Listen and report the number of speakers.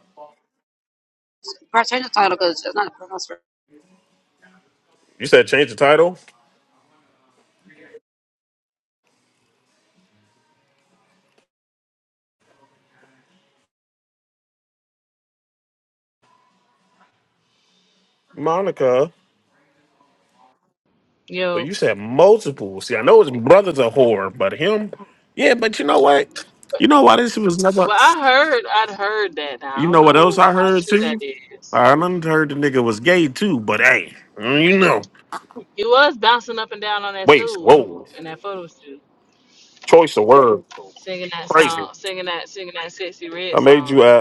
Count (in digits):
3